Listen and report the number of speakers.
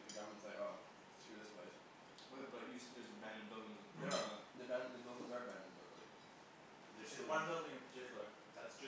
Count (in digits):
3